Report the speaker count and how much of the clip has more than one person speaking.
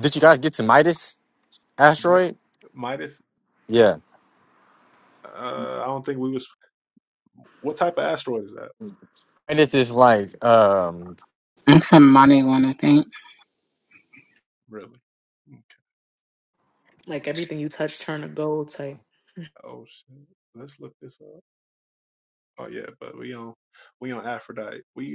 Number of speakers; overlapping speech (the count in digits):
4, about 2%